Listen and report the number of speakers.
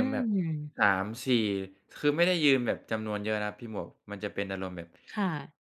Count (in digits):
2